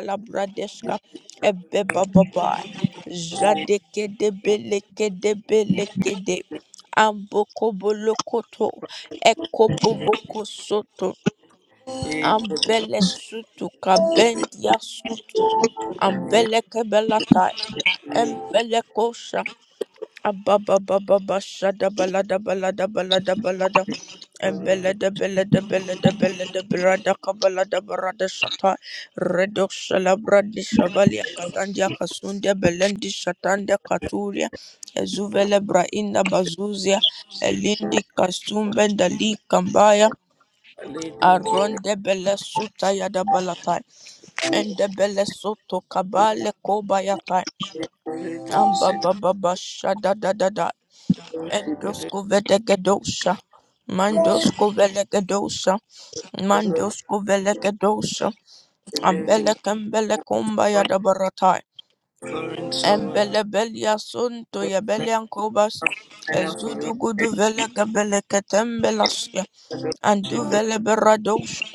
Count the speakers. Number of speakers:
two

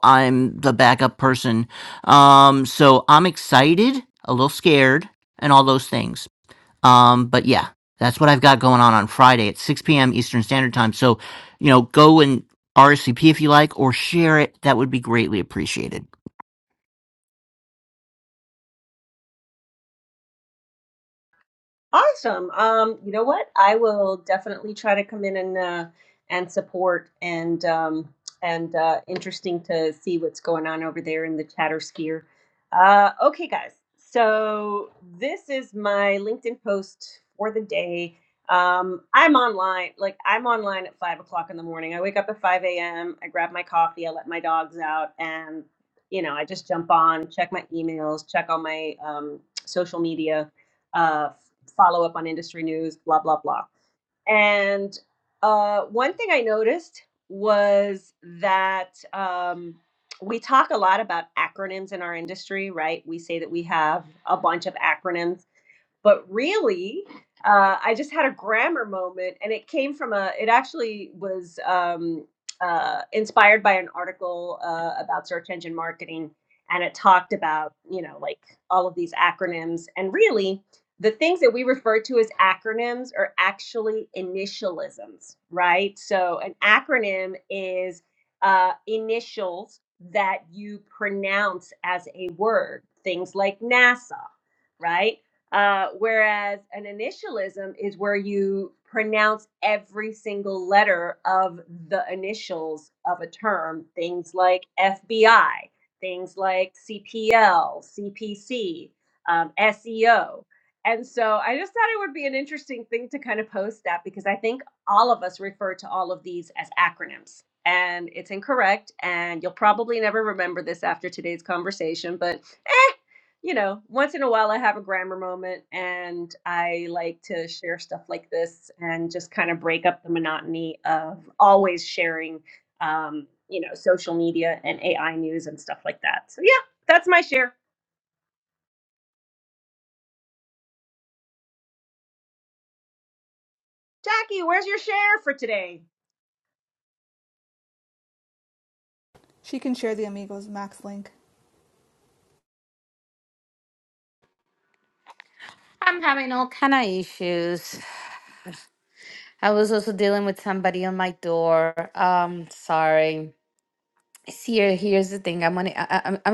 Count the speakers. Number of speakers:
four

